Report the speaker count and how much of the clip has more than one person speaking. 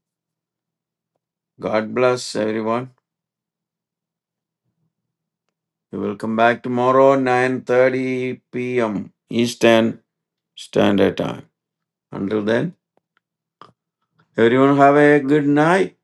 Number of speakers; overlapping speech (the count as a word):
one, no overlap